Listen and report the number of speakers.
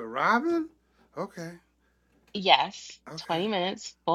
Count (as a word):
two